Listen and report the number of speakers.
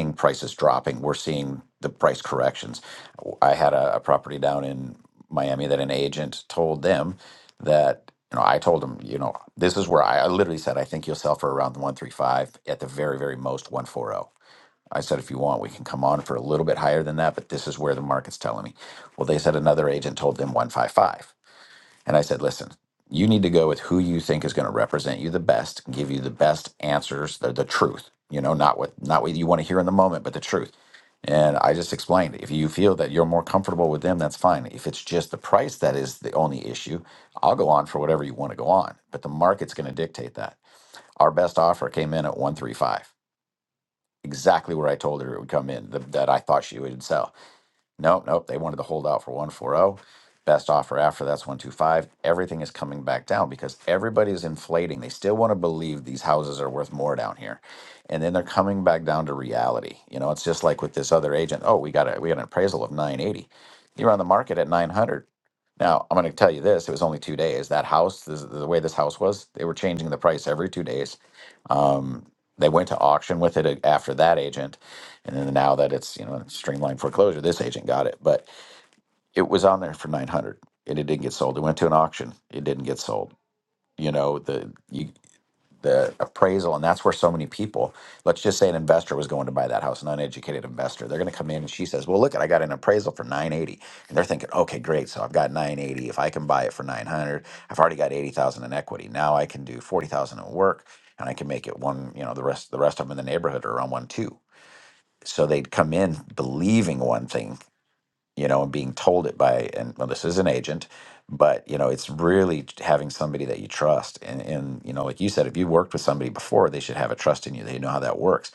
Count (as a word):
one